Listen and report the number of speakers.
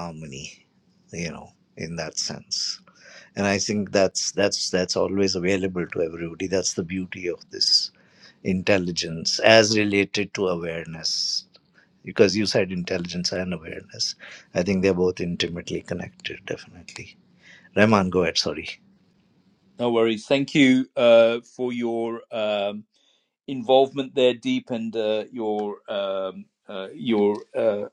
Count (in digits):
2